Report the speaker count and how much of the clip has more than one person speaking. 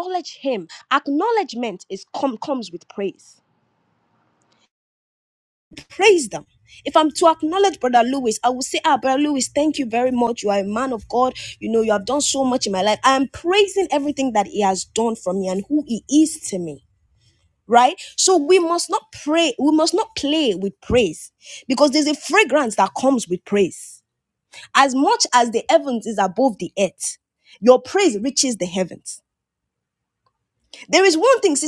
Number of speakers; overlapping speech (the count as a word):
one, no overlap